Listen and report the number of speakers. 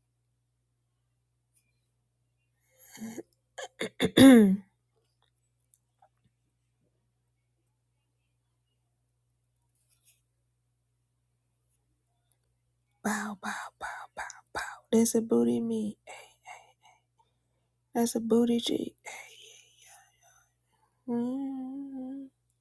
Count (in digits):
1